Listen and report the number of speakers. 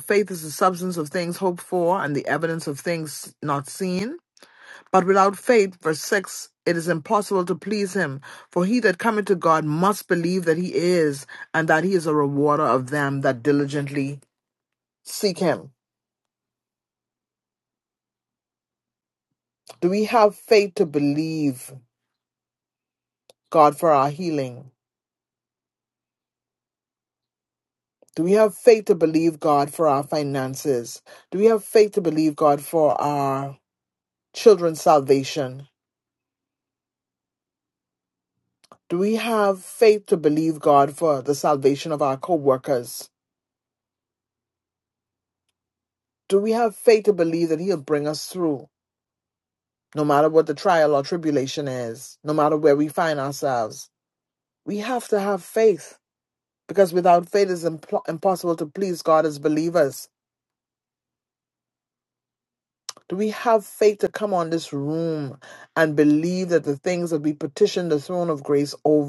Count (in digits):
1